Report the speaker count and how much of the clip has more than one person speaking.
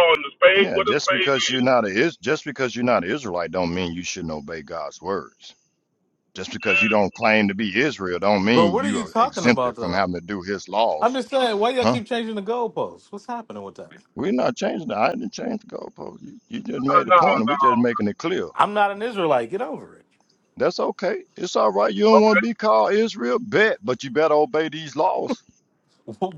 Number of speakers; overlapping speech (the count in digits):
3, about 15%